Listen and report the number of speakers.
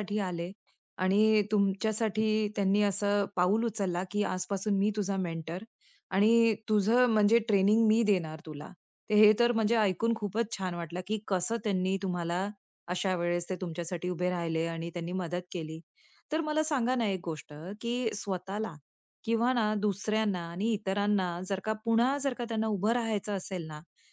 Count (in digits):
1